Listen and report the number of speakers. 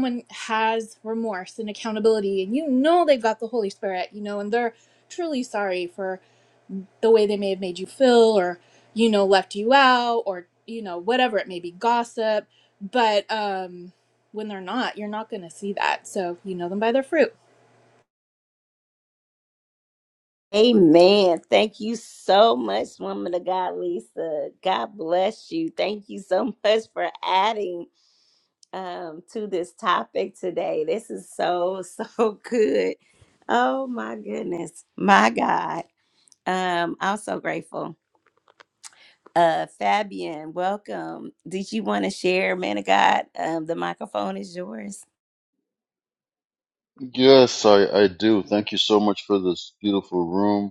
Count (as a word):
three